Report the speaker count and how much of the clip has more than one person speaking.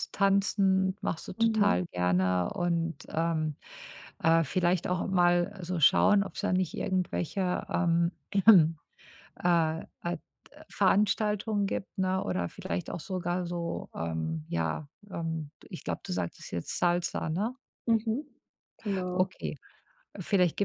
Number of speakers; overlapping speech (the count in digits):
2, about 3%